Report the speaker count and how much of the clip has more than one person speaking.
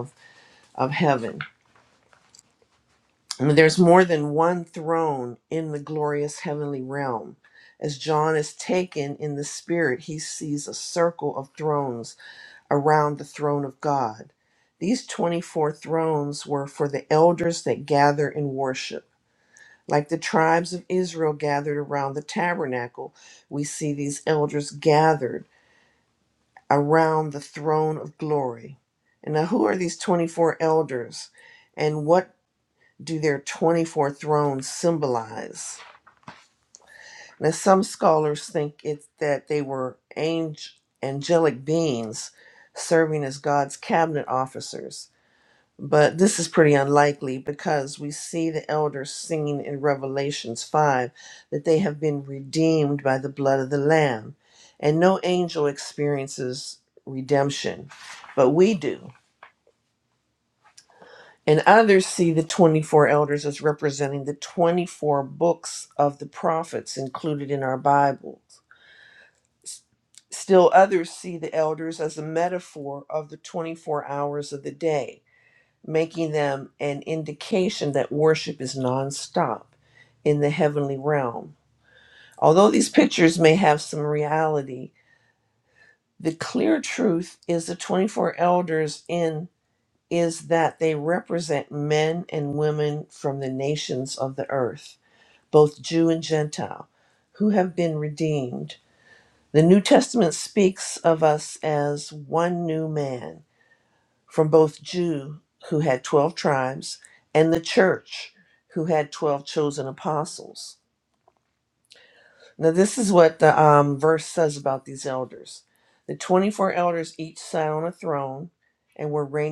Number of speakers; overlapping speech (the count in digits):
1, no overlap